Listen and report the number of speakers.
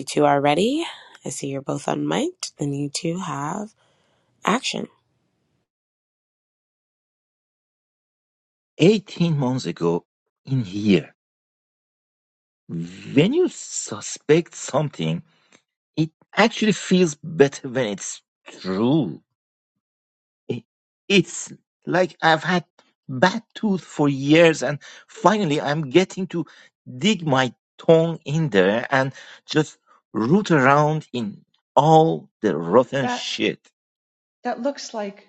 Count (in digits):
3